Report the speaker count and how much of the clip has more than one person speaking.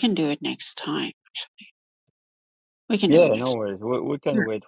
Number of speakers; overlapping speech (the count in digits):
2, about 12%